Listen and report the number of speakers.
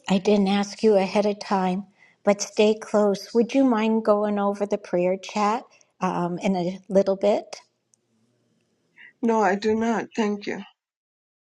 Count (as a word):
two